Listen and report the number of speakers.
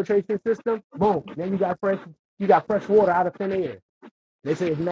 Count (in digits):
1